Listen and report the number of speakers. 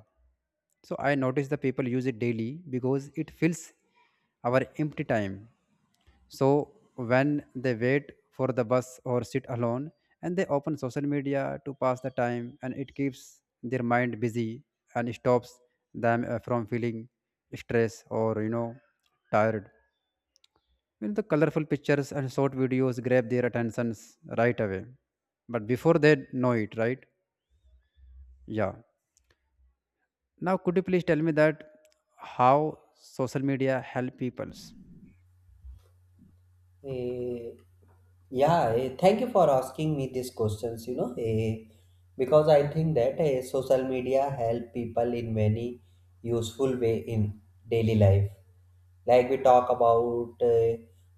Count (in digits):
2